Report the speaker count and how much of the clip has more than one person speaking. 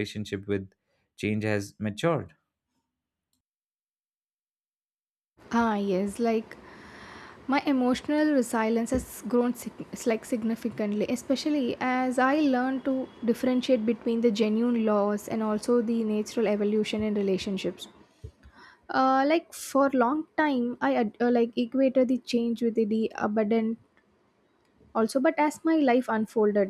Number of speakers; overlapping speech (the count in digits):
2, no overlap